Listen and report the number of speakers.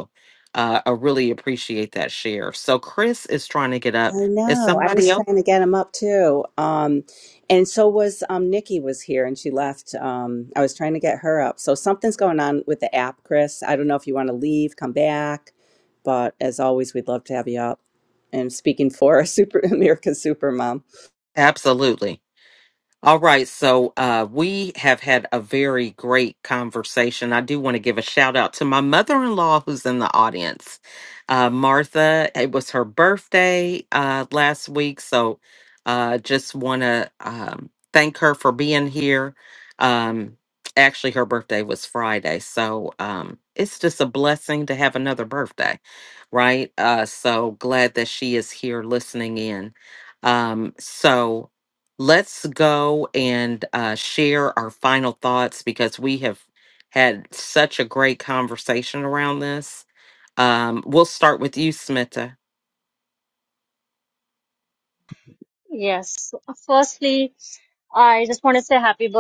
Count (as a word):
three